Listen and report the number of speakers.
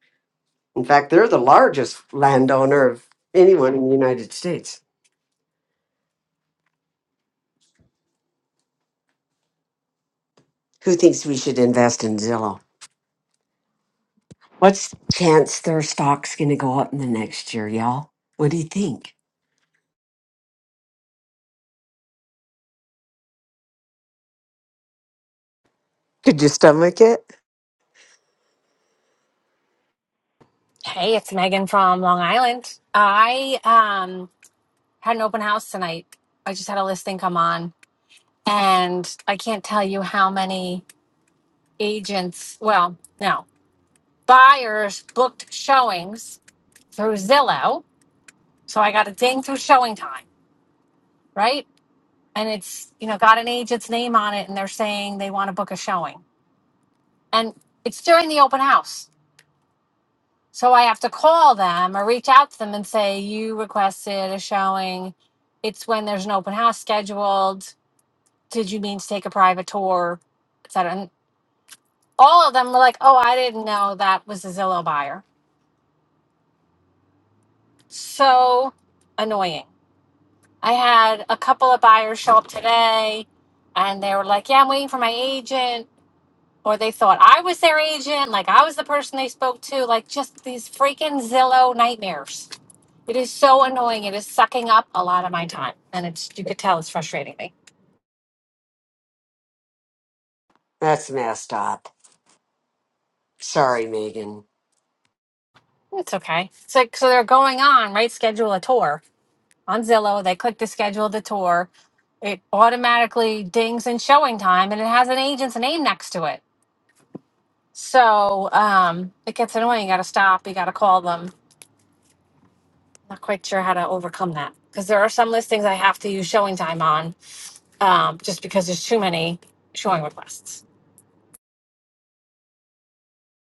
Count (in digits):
2